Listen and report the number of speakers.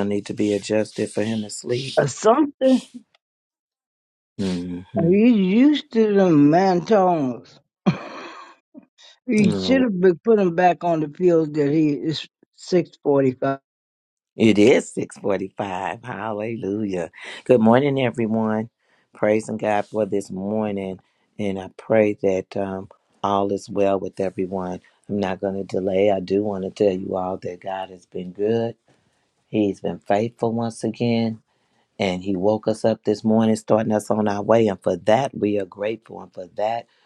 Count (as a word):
two